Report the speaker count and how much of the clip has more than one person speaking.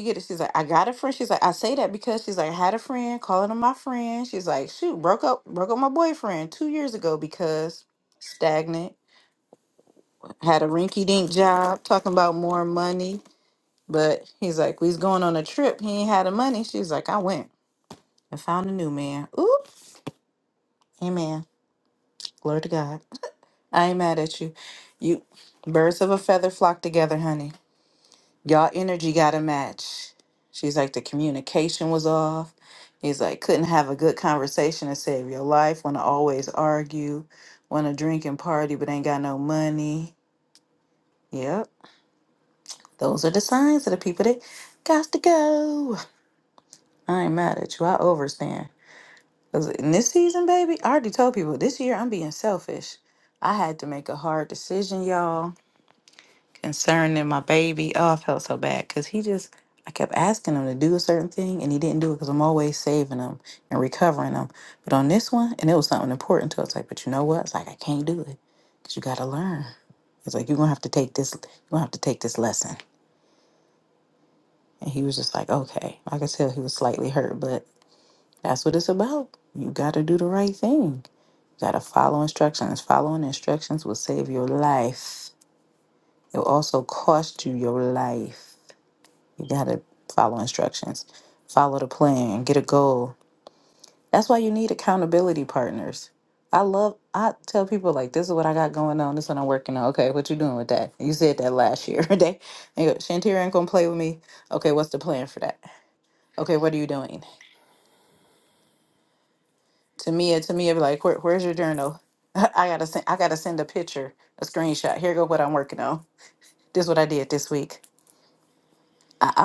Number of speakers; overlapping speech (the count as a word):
one, no overlap